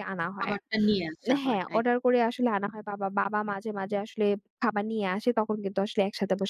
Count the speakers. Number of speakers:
2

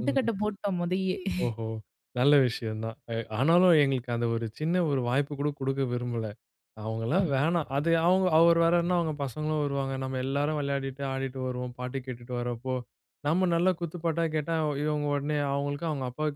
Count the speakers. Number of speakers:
2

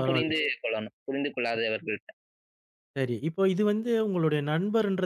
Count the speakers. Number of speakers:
2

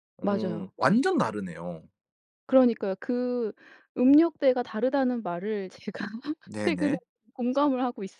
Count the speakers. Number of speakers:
2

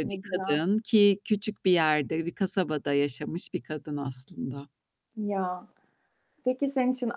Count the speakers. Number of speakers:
2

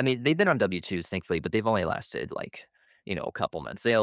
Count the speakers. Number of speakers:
1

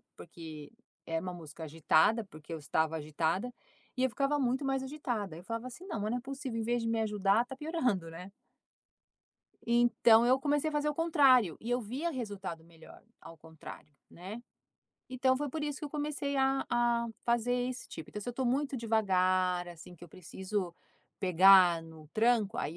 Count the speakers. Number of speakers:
1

